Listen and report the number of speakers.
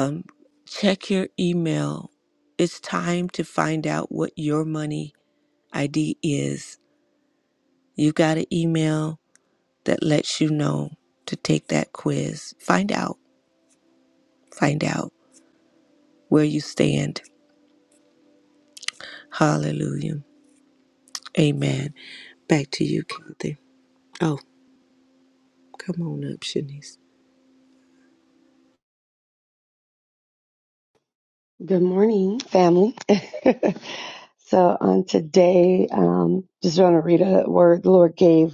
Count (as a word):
two